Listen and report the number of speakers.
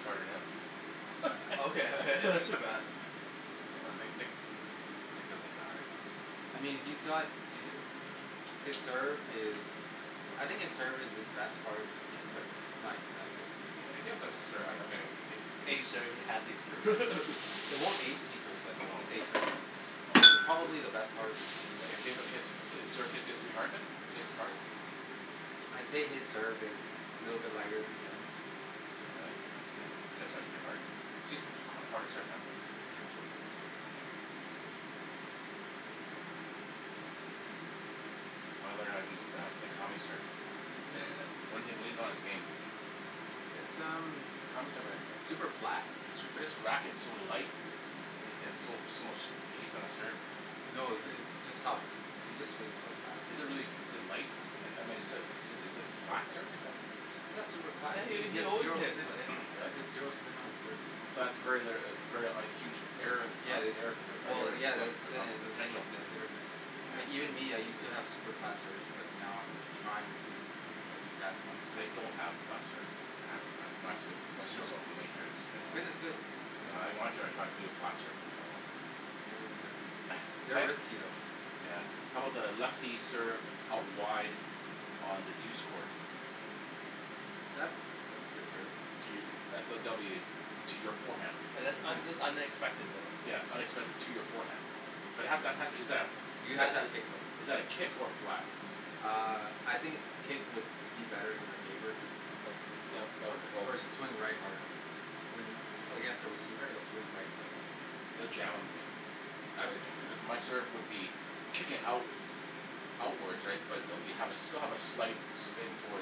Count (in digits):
3